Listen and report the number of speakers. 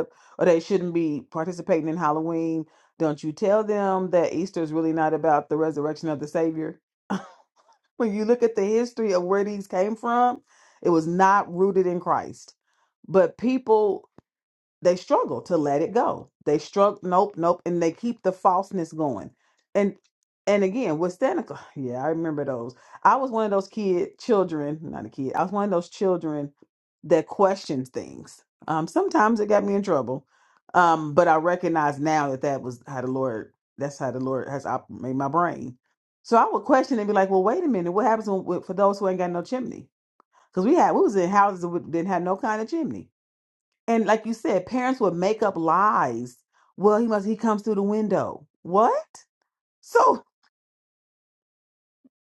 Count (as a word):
one